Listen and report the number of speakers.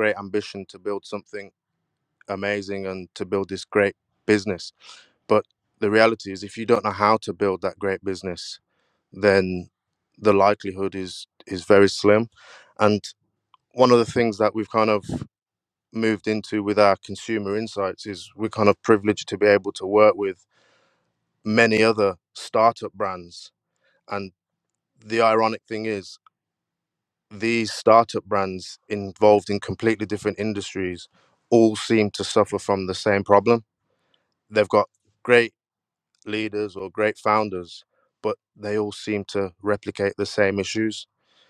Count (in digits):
1